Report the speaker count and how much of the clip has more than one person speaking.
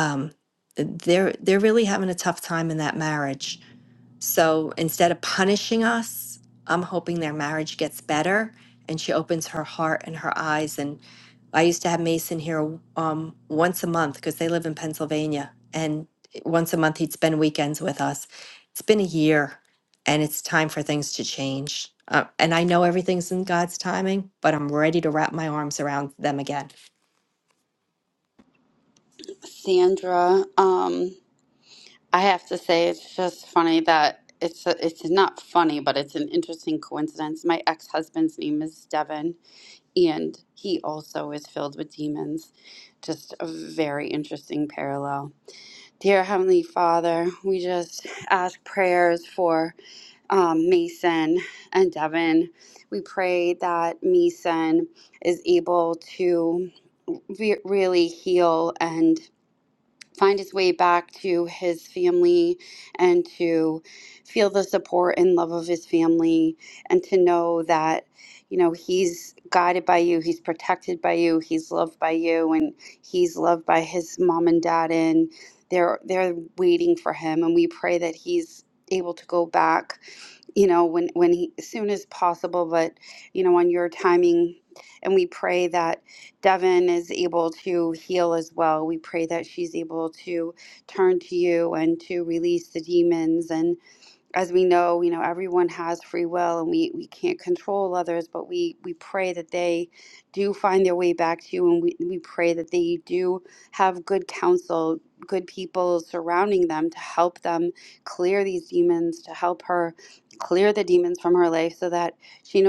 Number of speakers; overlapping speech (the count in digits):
2, no overlap